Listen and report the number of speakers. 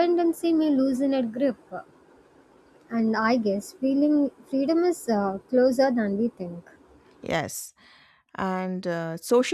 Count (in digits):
2